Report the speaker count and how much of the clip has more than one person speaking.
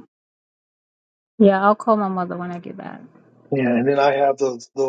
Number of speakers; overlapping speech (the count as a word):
two, no overlap